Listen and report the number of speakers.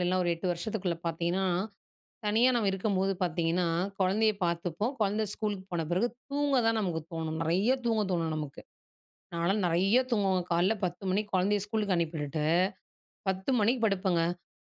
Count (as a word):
one